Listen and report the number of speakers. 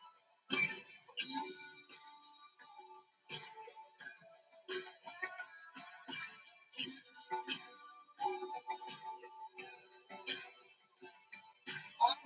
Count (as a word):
zero